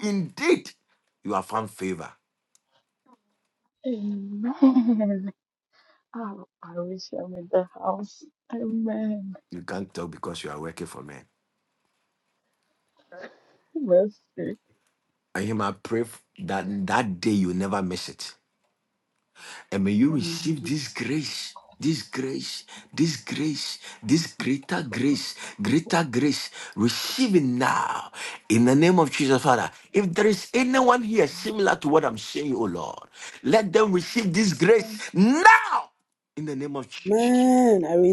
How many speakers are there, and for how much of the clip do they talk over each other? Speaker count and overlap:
3, about 3%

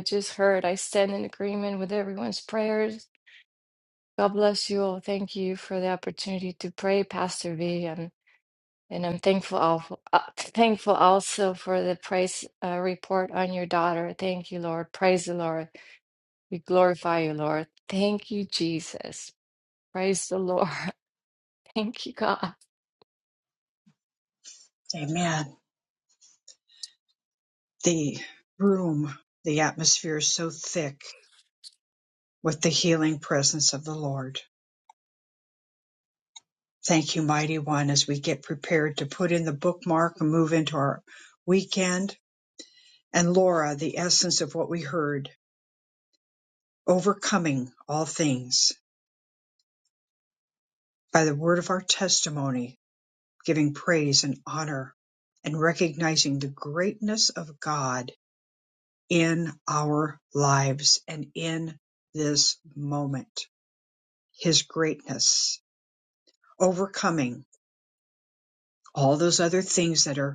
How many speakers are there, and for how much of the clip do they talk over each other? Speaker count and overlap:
2, no overlap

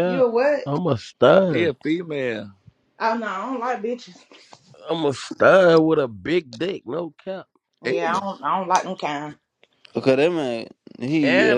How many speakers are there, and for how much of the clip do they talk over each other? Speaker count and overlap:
4, about 10%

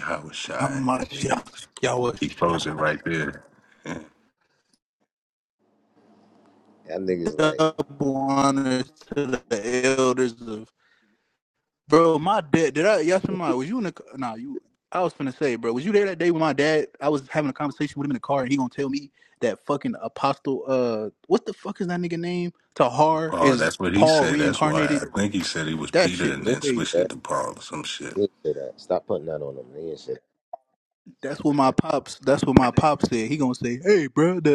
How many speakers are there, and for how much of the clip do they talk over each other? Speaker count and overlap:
3, about 13%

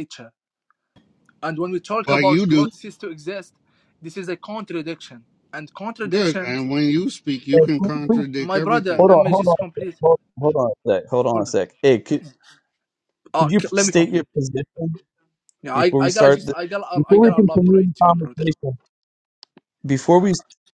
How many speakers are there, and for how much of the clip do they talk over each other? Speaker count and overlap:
3, about 30%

